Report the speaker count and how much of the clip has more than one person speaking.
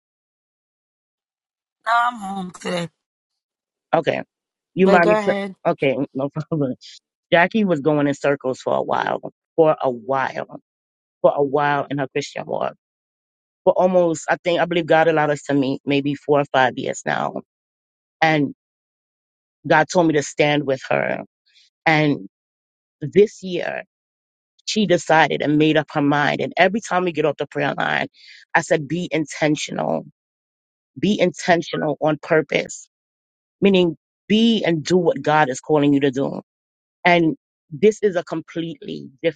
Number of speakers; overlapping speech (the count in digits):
2, about 1%